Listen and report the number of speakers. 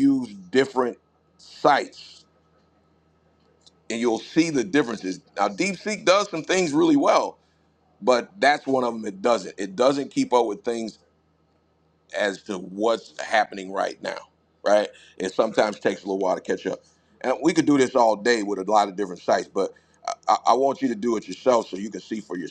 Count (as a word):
one